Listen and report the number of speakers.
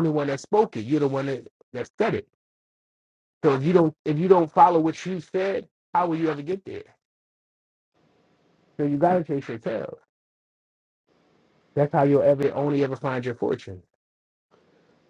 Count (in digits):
1